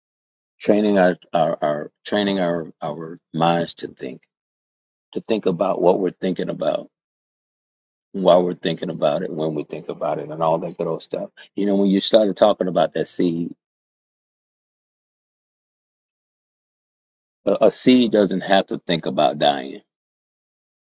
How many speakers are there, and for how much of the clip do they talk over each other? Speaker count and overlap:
1, no overlap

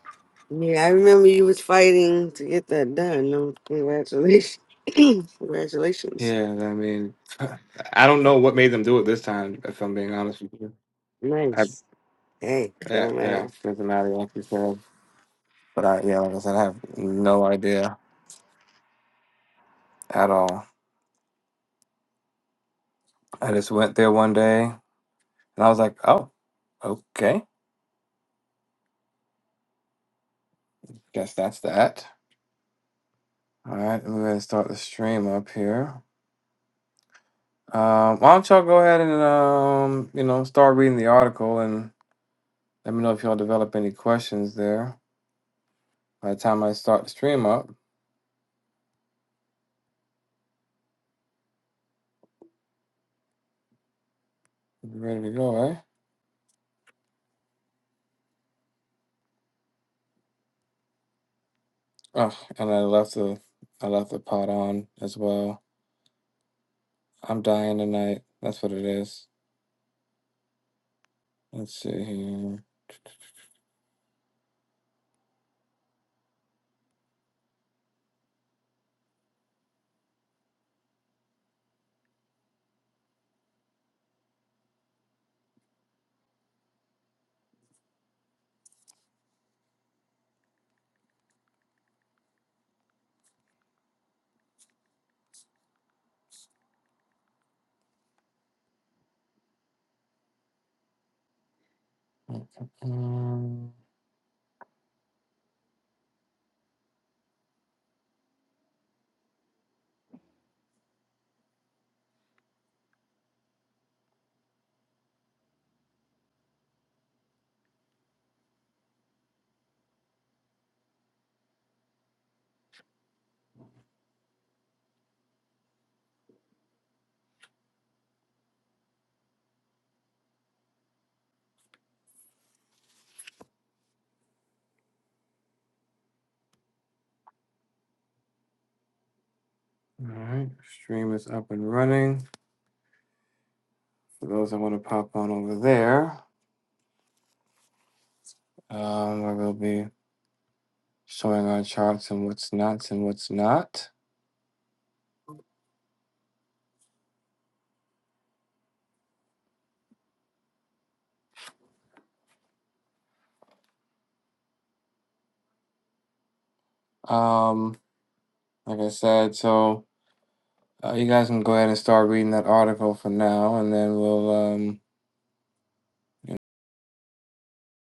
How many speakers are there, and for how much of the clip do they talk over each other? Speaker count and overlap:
2, under 1%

